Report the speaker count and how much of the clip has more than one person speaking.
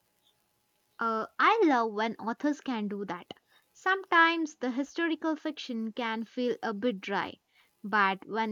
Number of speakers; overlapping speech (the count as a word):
one, no overlap